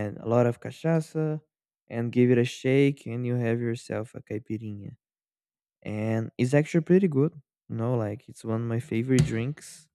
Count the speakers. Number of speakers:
1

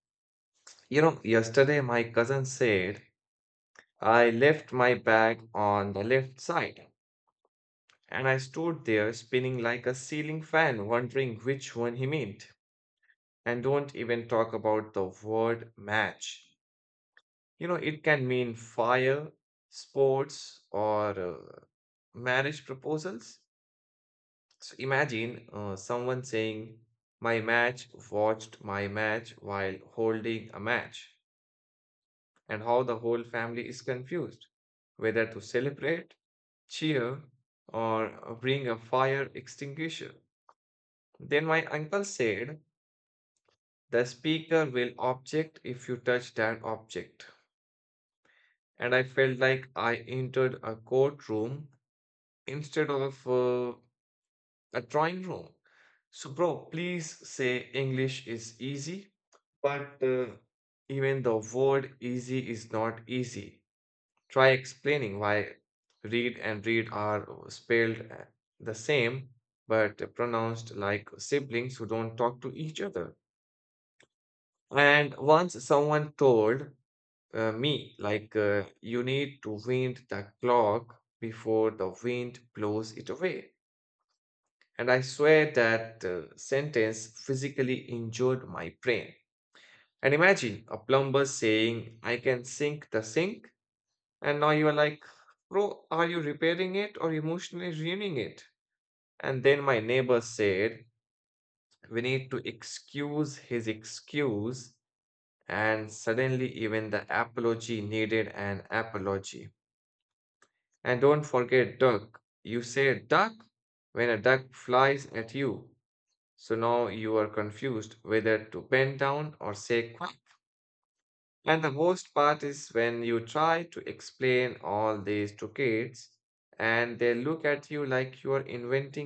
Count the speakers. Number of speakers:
1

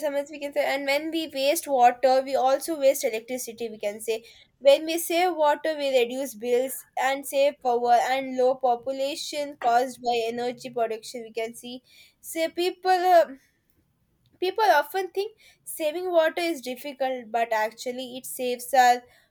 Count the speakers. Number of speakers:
1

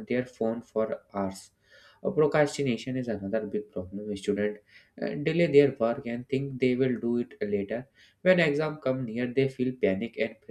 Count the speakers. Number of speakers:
1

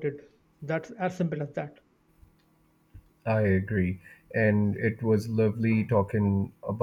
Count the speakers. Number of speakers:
2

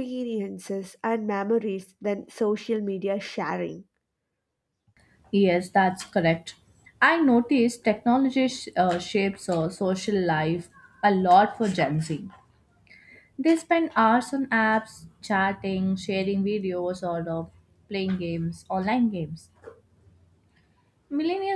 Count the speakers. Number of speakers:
2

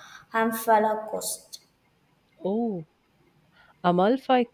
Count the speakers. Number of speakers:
2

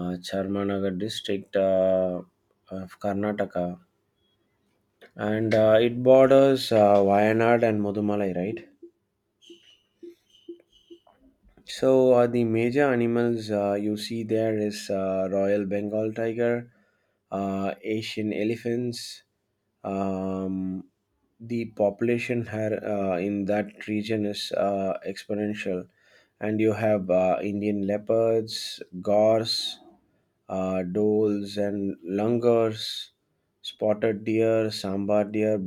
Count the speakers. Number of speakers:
1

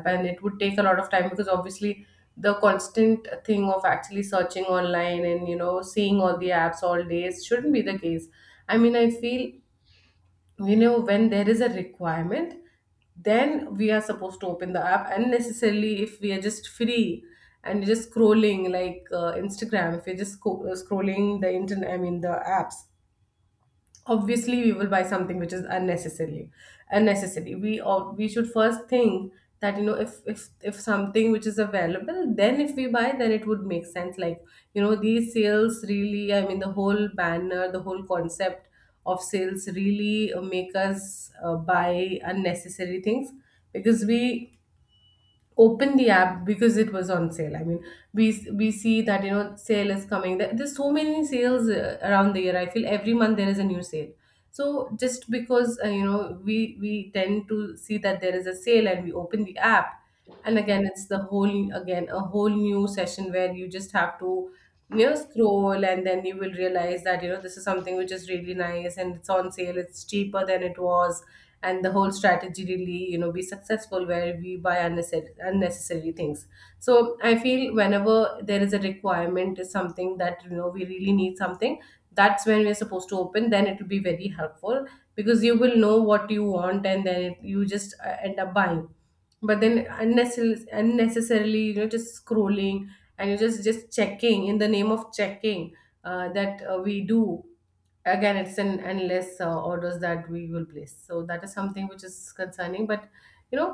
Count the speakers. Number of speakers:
1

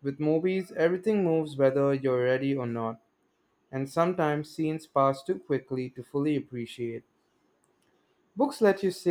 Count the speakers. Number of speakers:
1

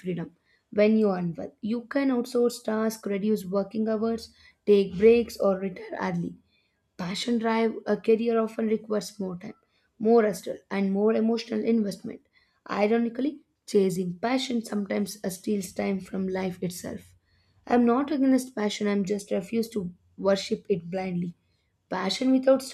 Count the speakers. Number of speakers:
1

